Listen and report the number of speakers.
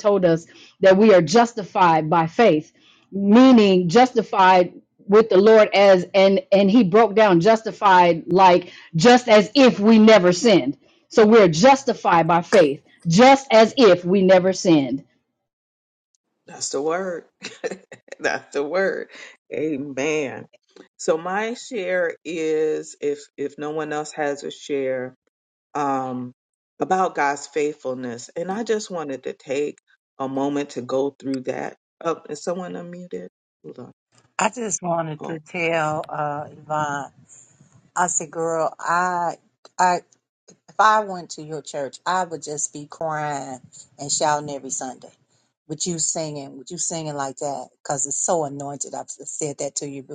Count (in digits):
3